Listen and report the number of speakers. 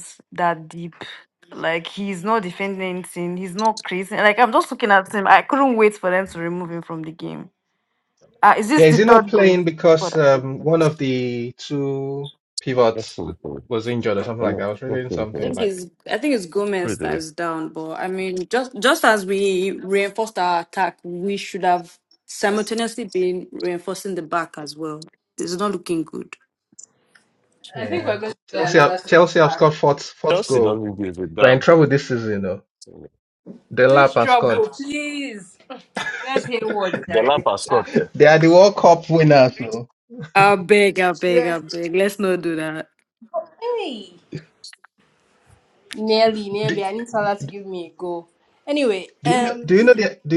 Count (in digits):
4